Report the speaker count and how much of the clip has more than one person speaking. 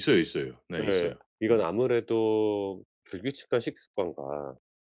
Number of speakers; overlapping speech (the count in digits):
2, about 11%